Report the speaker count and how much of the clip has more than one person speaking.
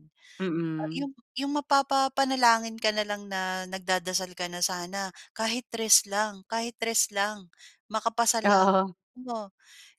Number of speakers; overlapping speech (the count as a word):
two, about 3%